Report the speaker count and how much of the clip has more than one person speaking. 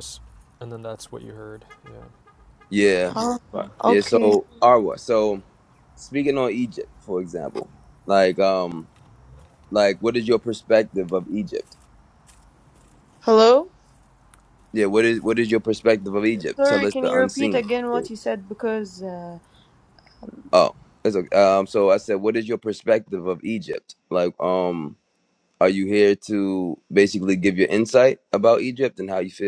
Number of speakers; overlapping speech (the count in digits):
3, about 6%